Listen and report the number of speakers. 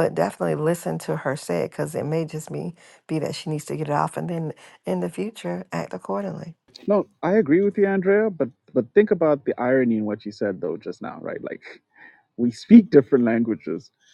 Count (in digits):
2